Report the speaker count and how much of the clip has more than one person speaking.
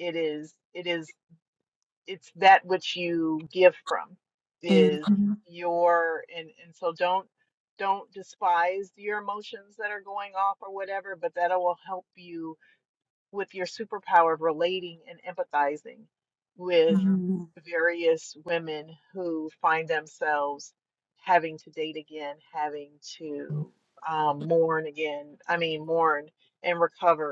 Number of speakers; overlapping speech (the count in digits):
2, about 2%